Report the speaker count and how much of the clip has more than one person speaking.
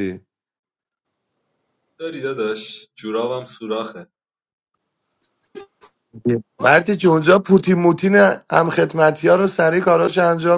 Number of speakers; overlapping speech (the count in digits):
2, no overlap